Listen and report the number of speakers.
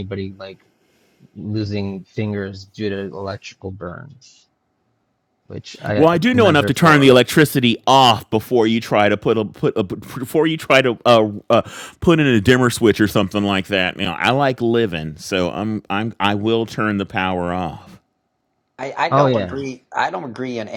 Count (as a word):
three